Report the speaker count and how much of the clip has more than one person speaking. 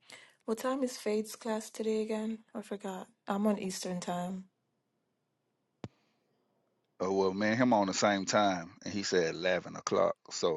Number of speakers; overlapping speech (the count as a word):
two, no overlap